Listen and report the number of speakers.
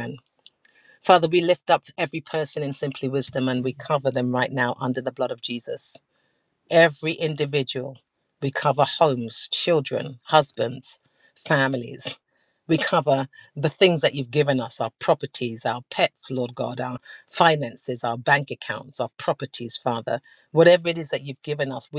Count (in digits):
1